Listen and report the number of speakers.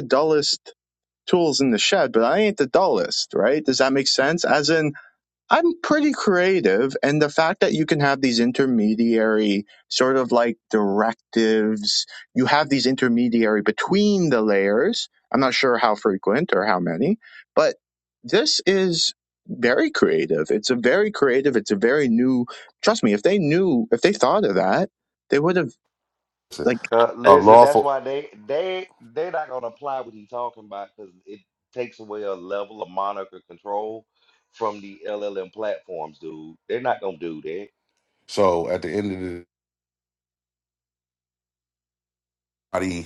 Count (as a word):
three